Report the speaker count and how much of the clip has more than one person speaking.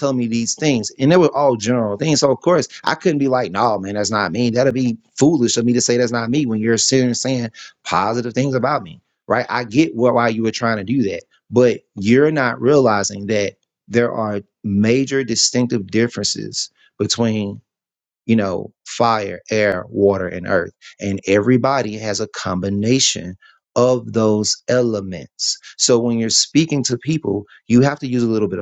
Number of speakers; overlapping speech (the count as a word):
one, no overlap